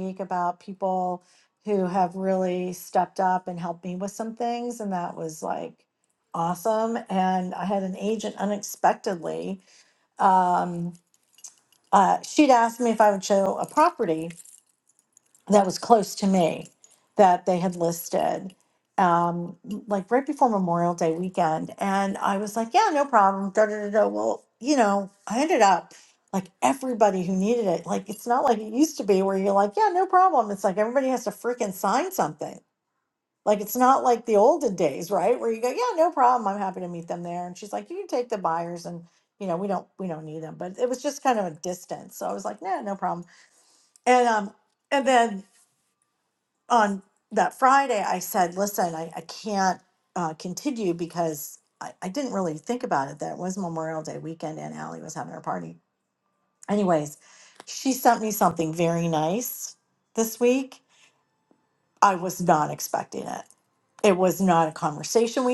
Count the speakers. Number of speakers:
1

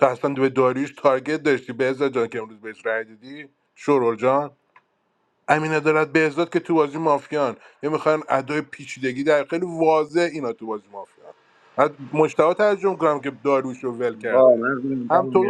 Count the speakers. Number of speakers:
2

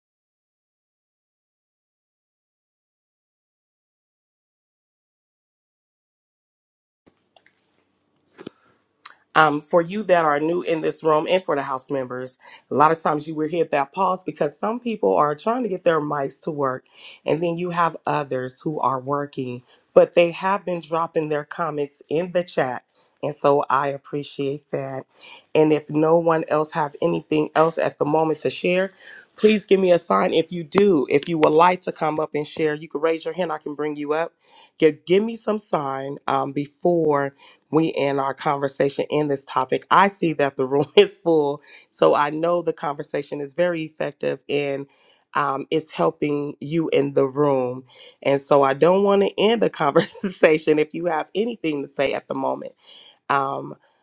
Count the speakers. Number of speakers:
1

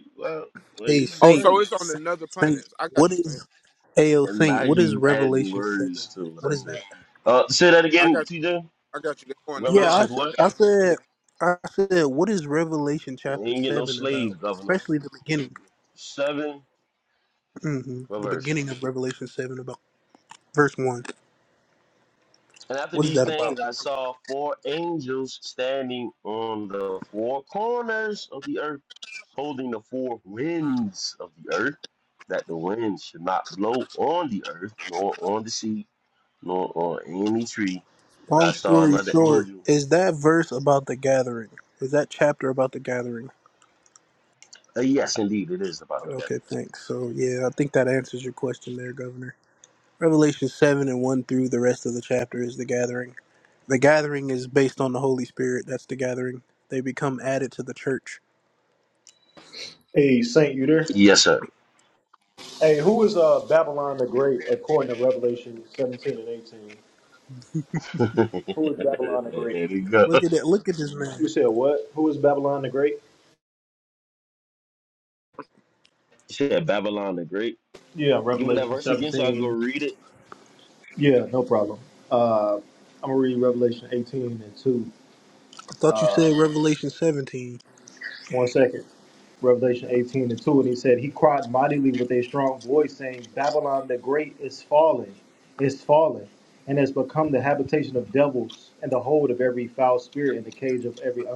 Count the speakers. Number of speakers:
4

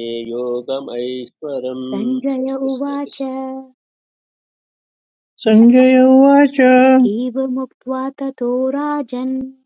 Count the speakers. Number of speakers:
3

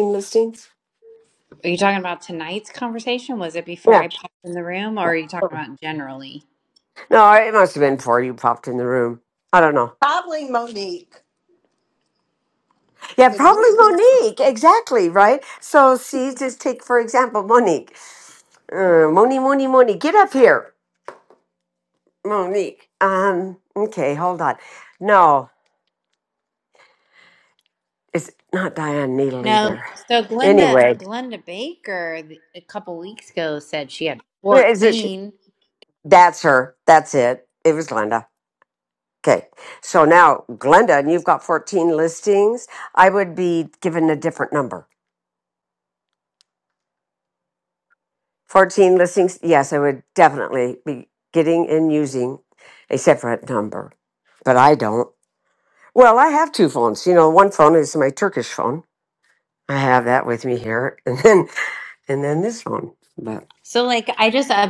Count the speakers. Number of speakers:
3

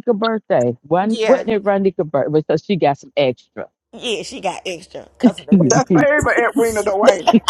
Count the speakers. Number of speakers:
3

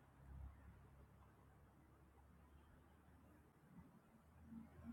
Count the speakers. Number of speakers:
0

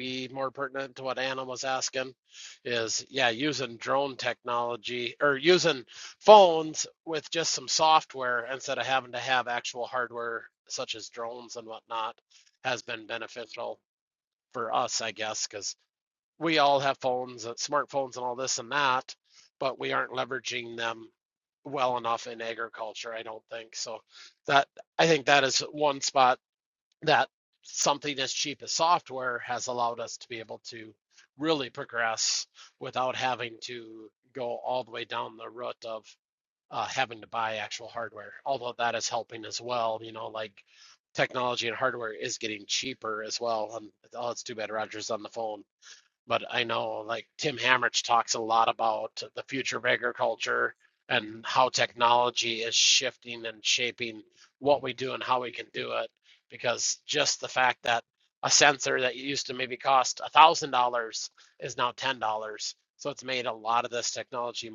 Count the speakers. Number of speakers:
1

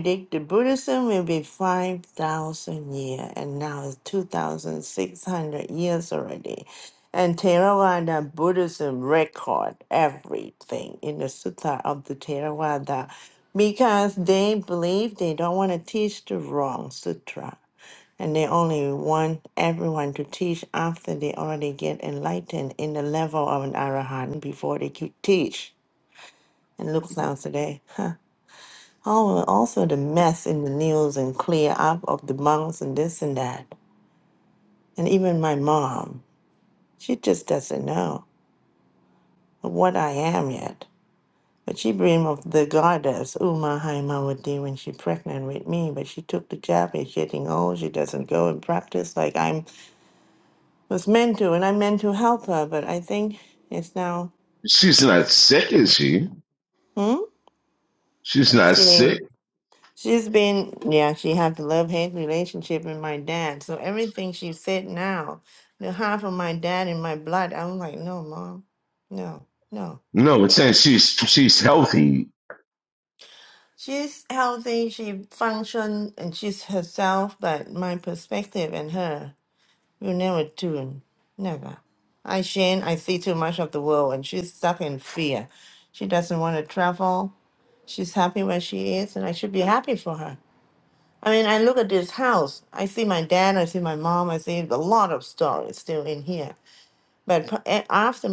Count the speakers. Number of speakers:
2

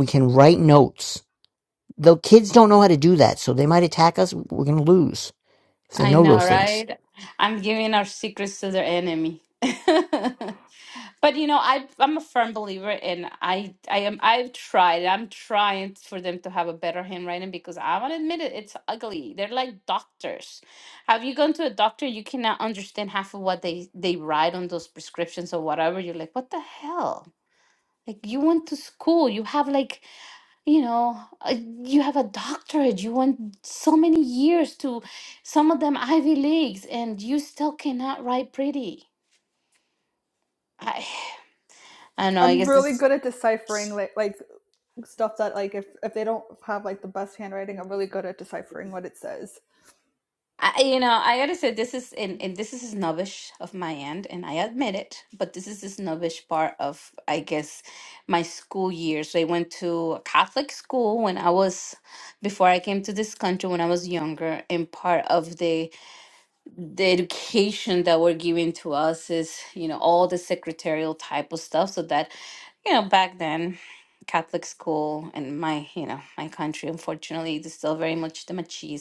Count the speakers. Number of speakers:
3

